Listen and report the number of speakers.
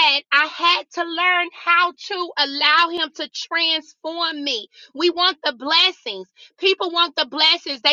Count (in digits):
1